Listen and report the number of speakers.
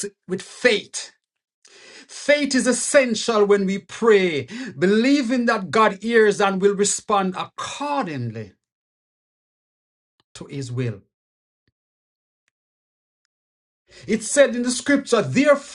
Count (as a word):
one